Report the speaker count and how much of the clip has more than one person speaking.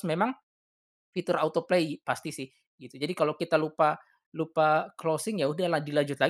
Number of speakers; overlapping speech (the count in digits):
1, no overlap